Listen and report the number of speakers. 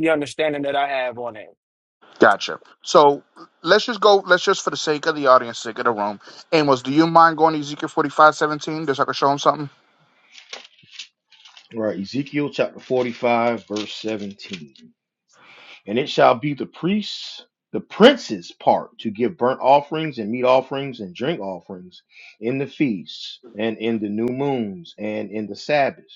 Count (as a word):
three